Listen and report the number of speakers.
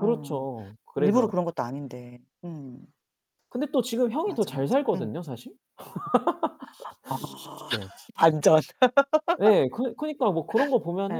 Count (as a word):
two